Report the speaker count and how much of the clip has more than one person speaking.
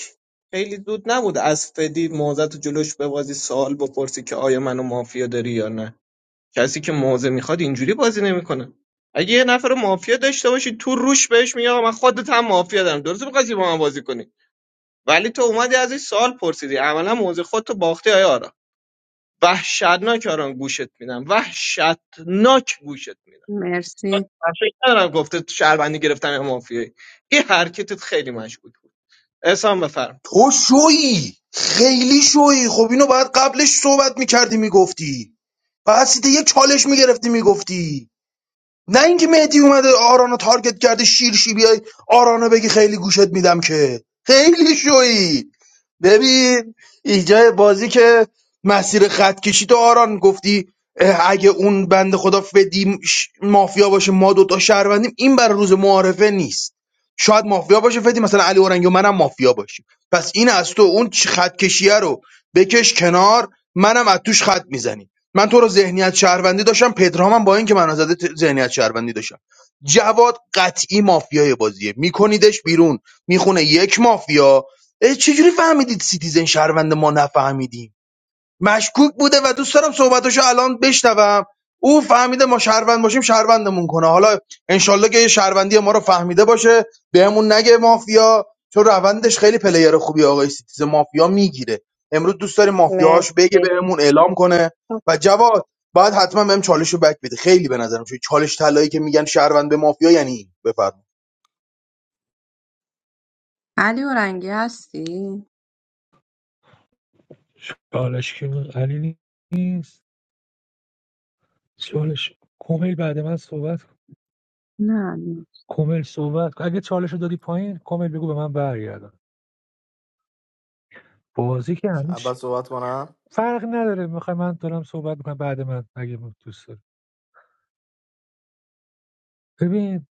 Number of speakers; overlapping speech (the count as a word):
five, about 1%